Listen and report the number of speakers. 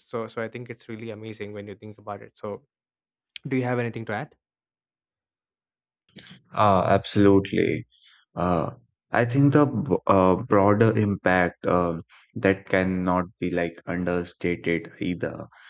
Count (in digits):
2